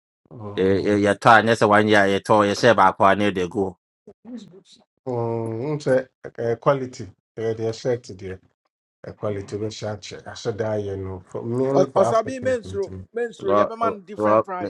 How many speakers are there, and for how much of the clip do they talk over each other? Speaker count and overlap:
3, about 15%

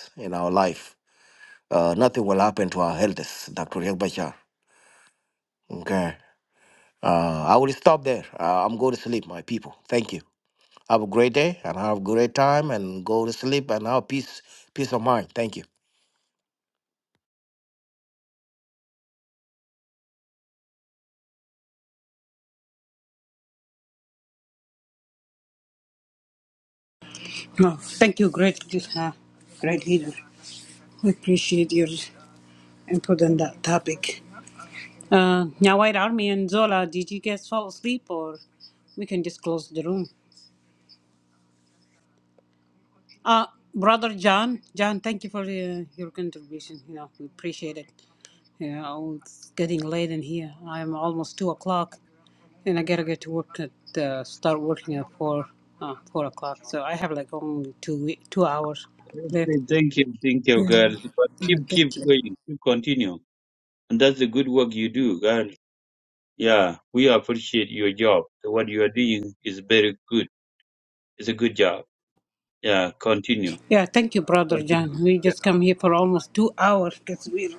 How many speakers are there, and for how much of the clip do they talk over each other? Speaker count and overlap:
3, about 1%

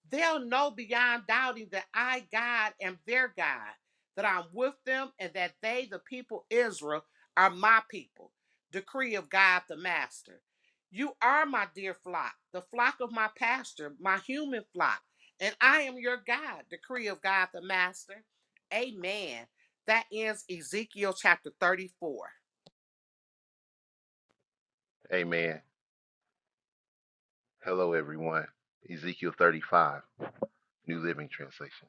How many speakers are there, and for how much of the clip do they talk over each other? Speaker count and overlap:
2, no overlap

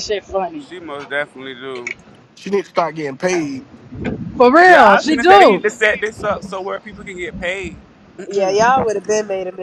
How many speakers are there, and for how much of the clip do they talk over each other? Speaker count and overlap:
4, about 10%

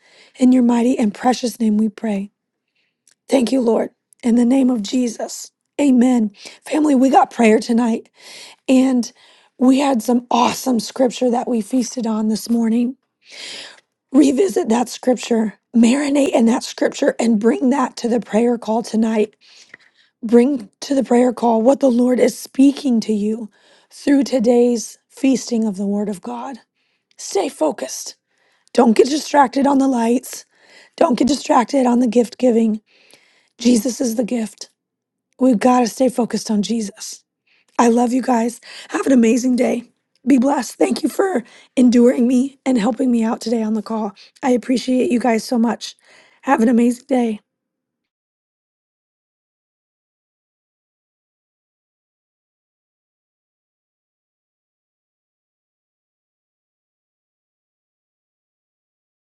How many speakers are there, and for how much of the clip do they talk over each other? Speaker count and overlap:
1, no overlap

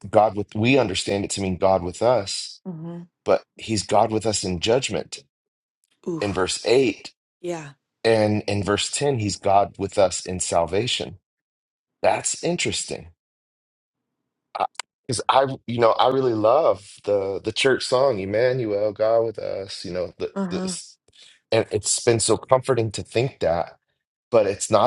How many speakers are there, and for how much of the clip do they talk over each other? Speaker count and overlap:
2, about 2%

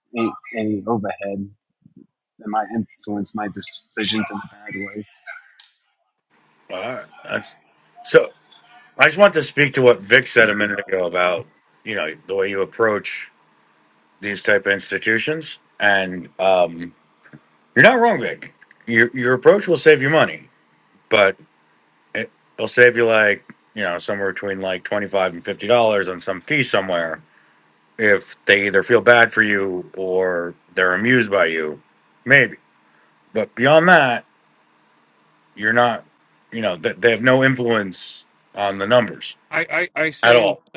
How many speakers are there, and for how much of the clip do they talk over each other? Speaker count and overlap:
3, about 1%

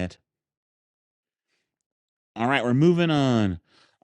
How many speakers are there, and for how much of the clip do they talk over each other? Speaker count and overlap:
1, no overlap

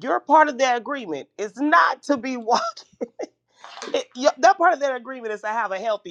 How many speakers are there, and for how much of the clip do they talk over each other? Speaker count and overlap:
1, no overlap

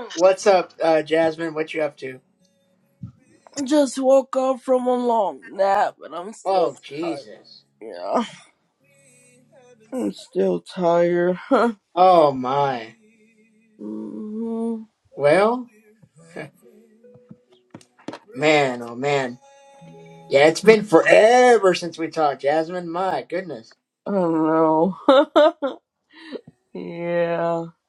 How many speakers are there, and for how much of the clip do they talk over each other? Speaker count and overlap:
2, about 3%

